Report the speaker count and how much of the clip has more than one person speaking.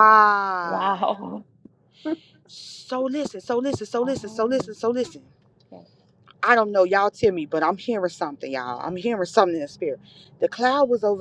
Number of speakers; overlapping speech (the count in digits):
2, about 7%